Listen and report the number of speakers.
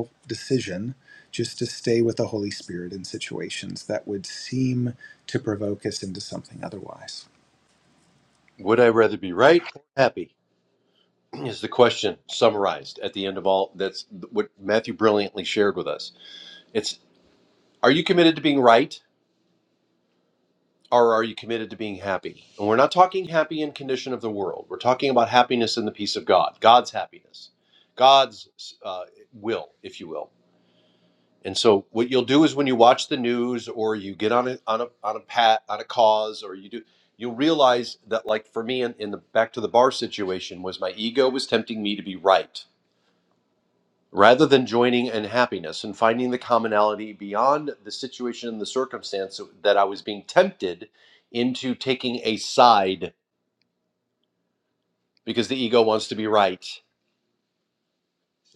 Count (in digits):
2